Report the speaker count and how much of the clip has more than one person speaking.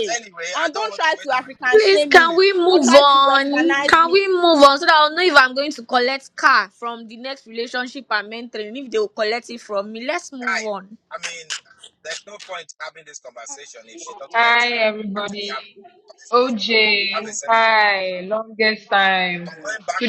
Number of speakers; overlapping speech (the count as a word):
four, about 23%